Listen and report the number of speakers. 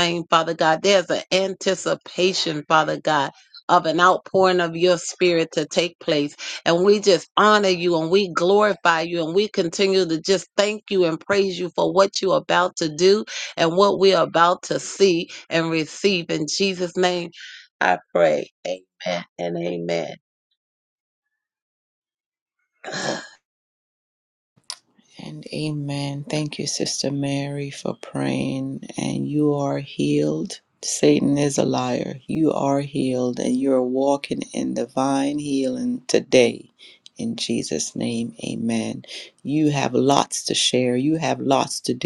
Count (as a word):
two